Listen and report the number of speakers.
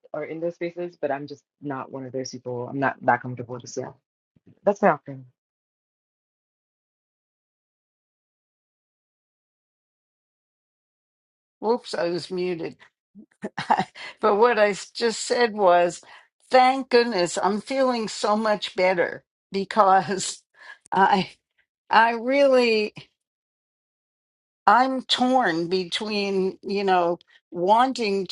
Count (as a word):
two